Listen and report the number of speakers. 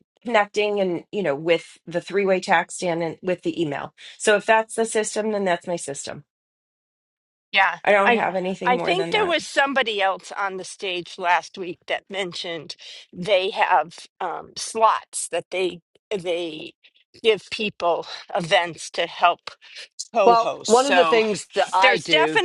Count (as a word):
three